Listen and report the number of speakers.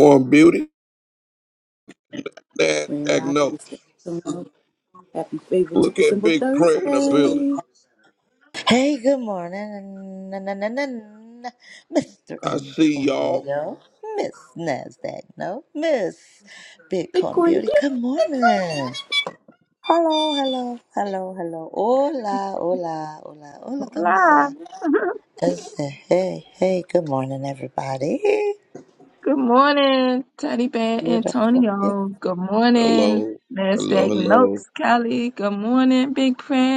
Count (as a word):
four